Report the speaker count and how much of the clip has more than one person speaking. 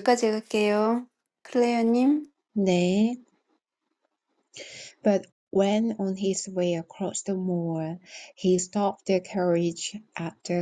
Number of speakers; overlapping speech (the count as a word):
two, no overlap